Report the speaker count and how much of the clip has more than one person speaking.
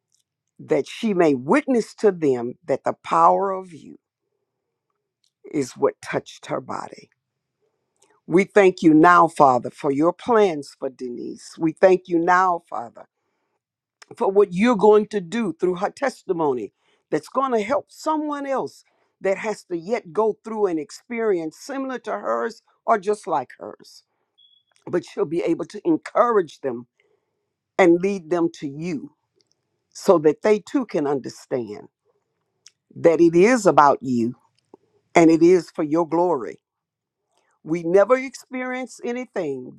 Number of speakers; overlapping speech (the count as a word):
one, no overlap